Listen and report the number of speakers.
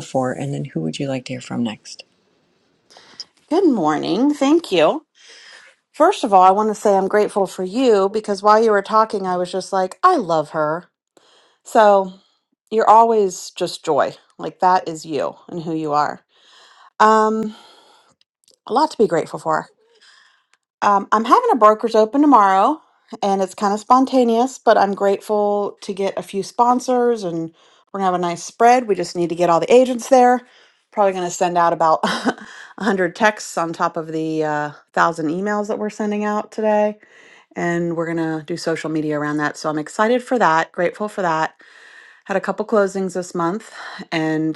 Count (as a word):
two